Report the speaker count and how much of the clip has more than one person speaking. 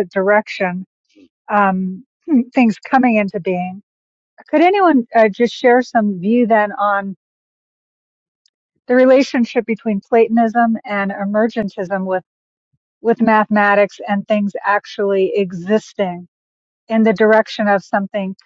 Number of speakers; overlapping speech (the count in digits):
1, no overlap